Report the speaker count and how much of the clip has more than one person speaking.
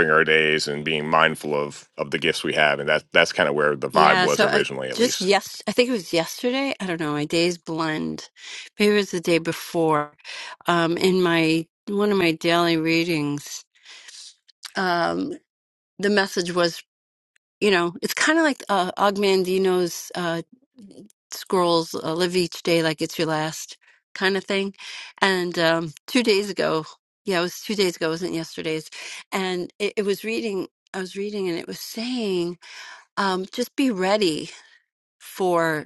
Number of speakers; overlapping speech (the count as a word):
two, about 4%